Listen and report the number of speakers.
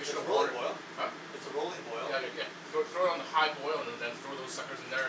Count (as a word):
two